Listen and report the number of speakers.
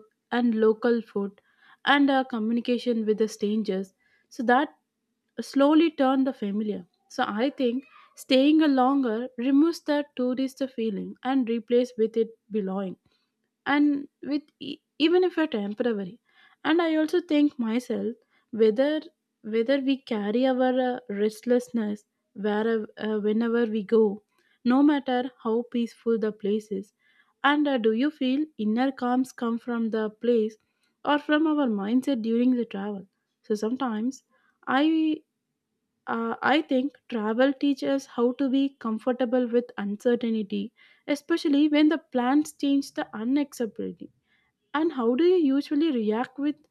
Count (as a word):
one